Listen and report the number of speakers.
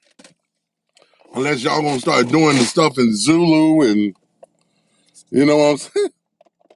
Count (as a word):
one